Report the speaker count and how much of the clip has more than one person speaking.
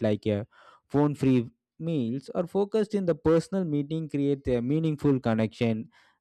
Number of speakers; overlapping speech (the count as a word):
one, no overlap